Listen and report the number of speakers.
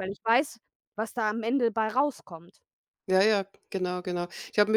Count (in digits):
2